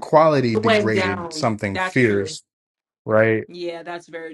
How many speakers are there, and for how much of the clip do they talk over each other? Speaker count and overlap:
two, about 41%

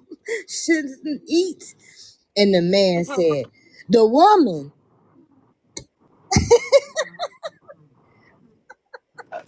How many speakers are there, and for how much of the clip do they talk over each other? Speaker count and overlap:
one, no overlap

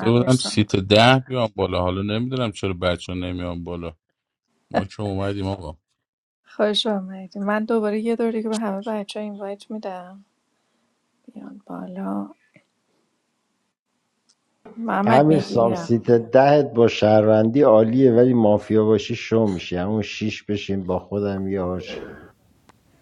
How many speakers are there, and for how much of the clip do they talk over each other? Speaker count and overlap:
three, about 6%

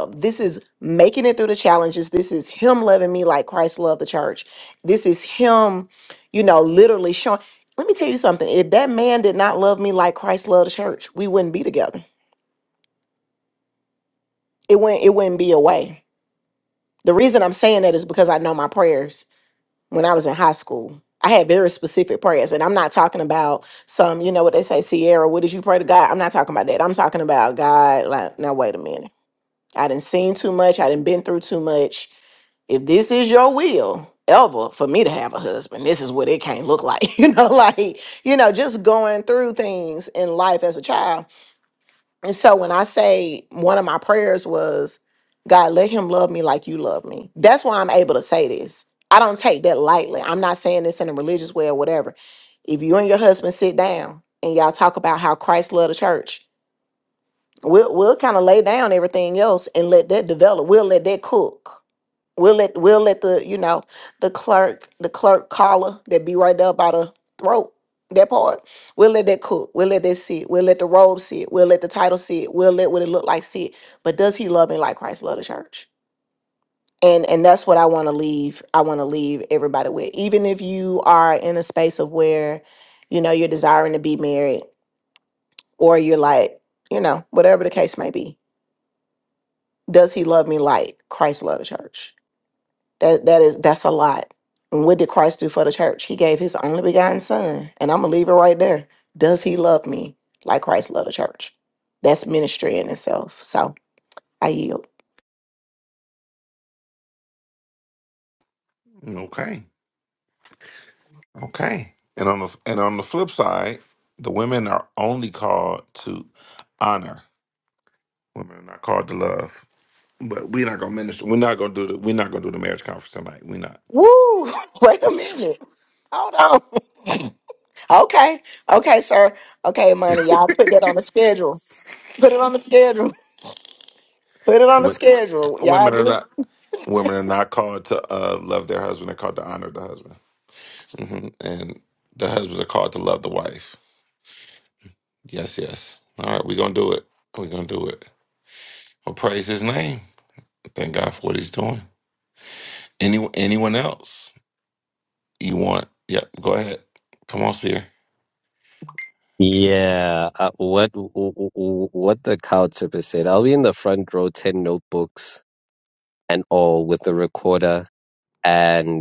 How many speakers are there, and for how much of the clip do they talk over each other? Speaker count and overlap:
three, under 1%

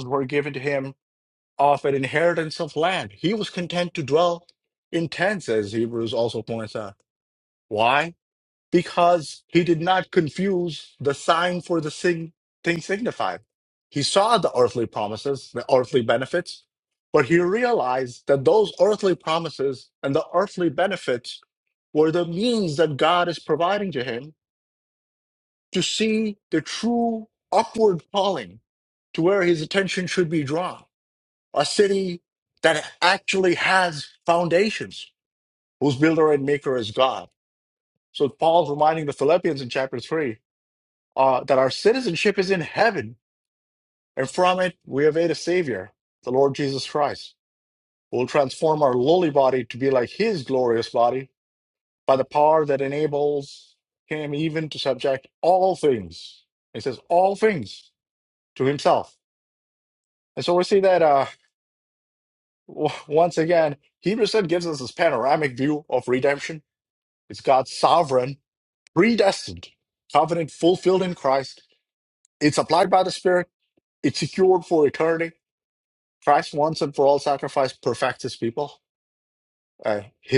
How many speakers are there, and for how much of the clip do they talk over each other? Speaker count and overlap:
one, no overlap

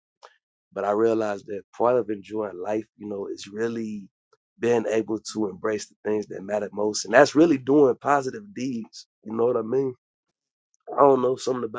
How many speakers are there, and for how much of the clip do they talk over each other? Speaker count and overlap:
one, no overlap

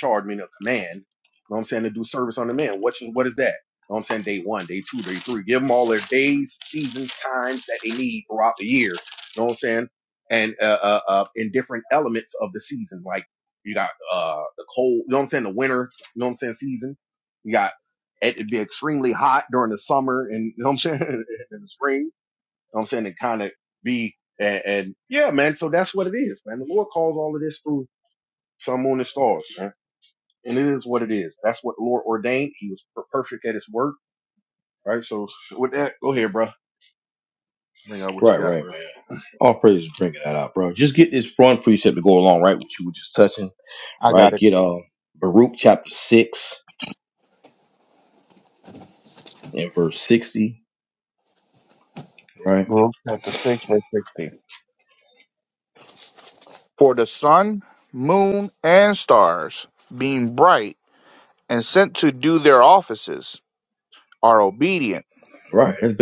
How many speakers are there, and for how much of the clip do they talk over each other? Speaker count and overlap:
three, about 1%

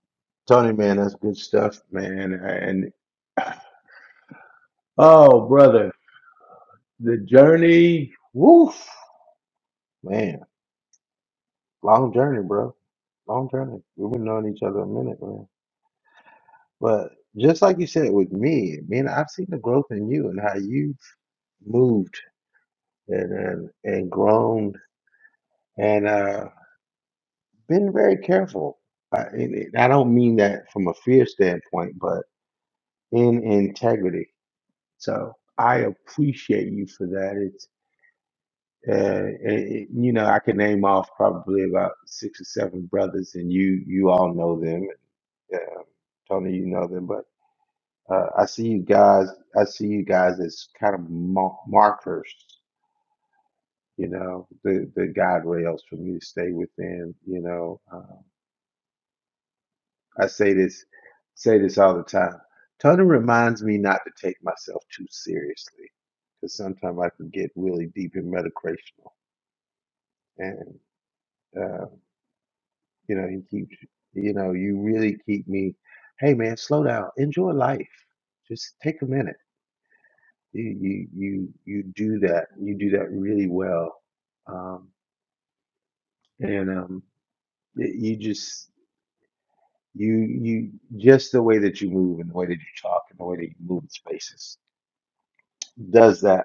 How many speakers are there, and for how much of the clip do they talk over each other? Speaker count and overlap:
one, no overlap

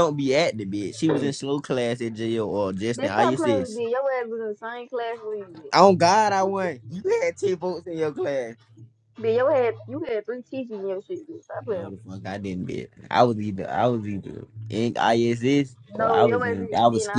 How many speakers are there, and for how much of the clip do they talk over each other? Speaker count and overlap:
two, about 12%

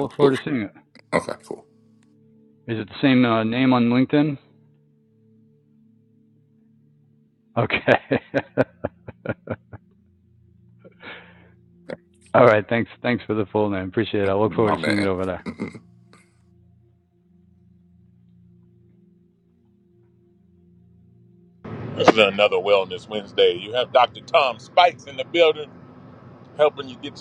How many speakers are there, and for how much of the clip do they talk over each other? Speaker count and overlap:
three, about 4%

